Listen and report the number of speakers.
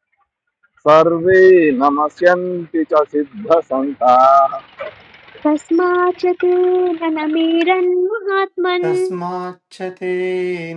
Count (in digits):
3